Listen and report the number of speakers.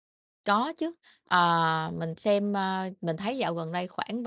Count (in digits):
1